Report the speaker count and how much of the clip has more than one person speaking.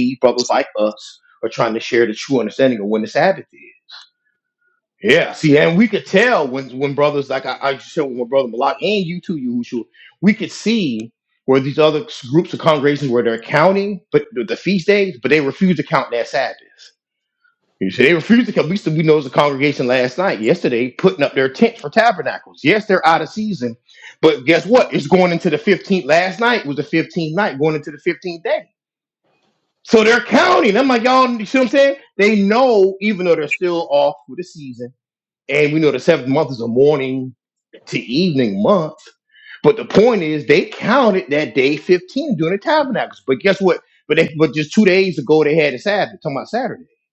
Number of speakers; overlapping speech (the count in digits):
1, no overlap